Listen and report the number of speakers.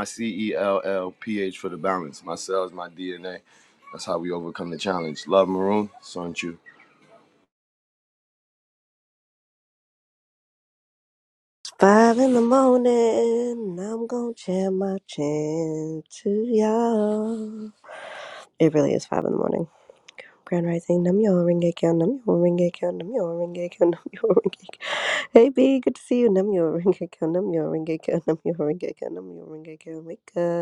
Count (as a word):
two